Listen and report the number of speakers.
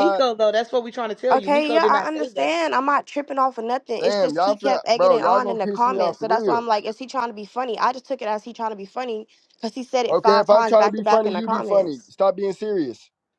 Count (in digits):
3